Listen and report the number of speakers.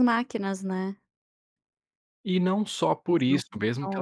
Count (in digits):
2